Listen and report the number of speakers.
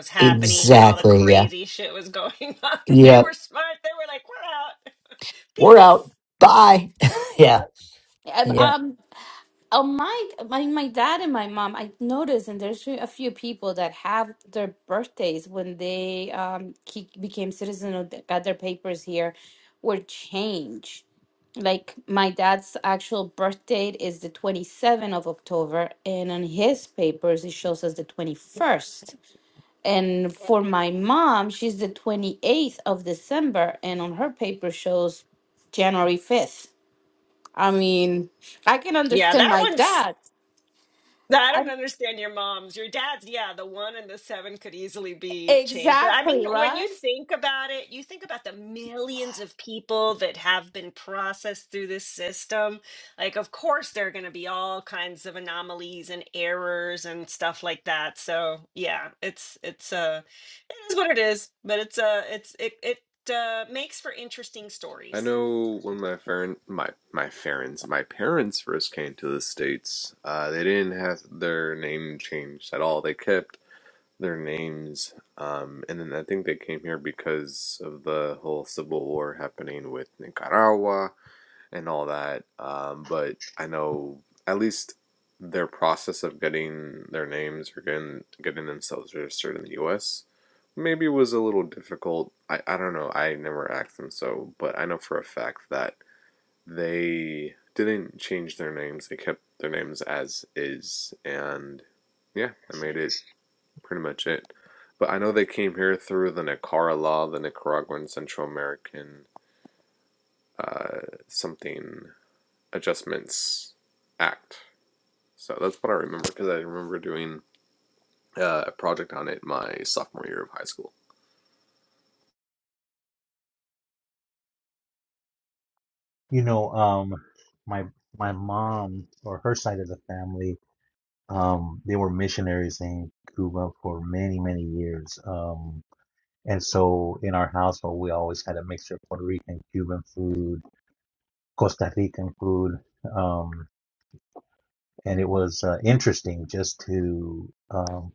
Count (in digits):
5